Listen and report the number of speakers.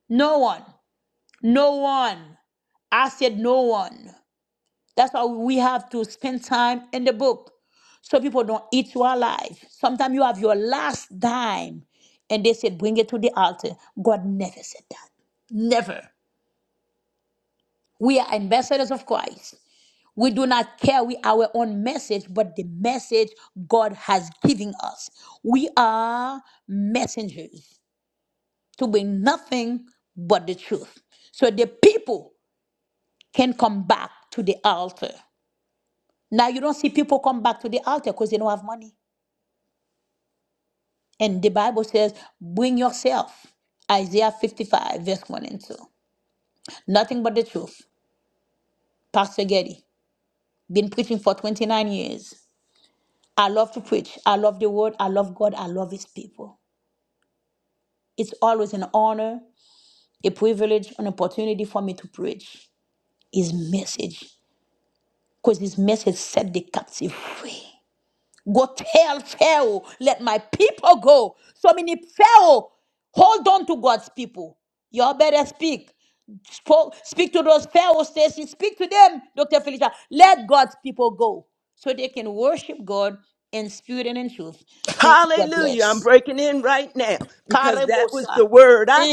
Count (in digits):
2